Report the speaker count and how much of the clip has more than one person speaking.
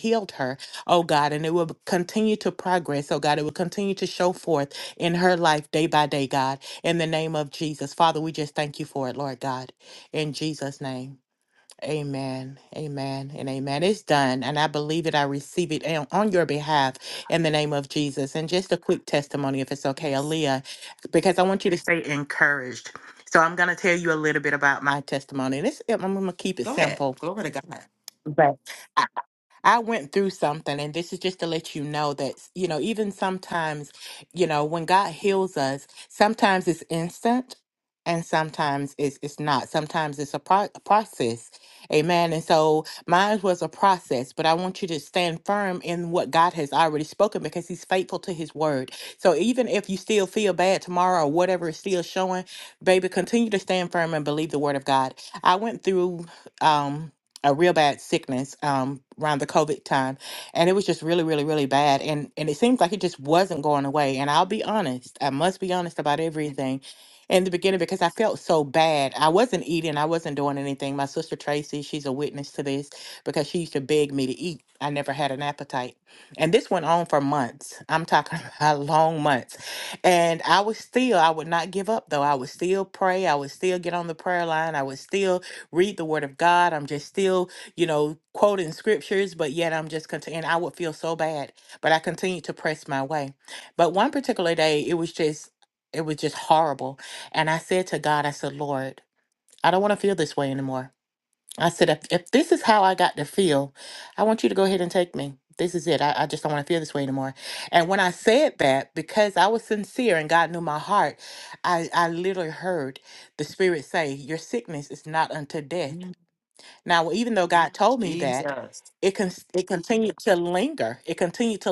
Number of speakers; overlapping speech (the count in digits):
2, about 1%